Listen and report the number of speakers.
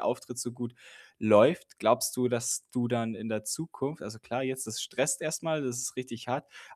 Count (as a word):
one